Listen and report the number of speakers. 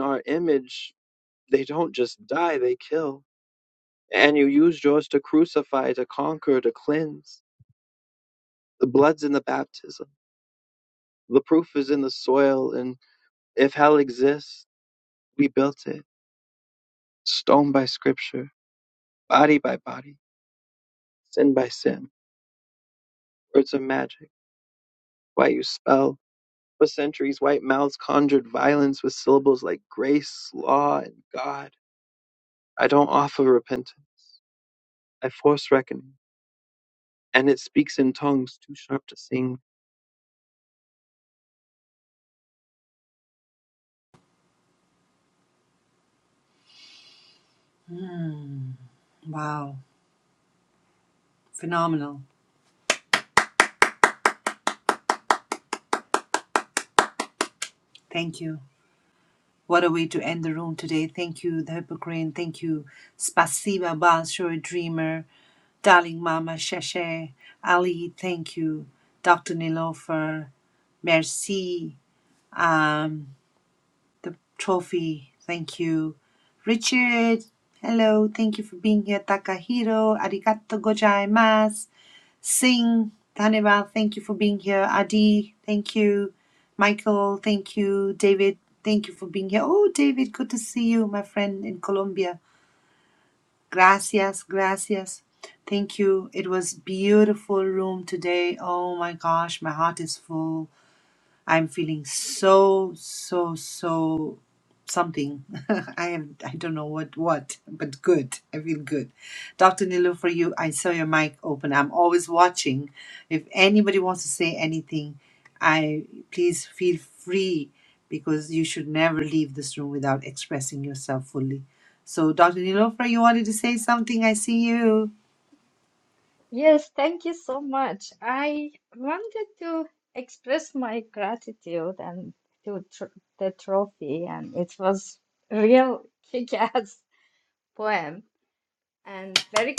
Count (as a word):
three